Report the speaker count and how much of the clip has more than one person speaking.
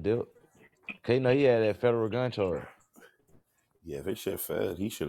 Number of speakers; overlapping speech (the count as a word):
two, no overlap